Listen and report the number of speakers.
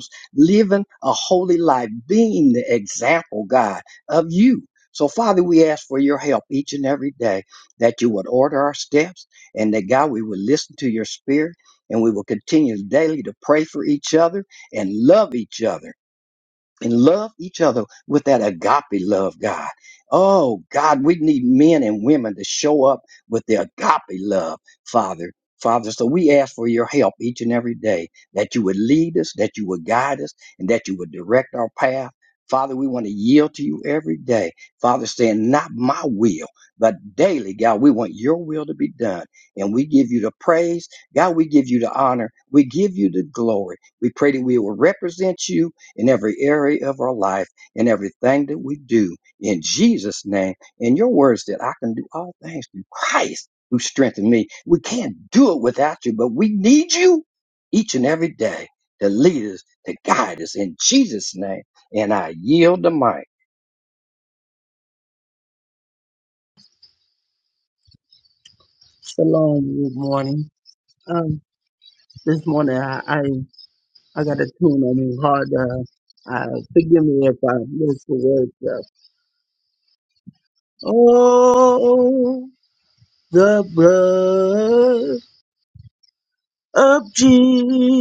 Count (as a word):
two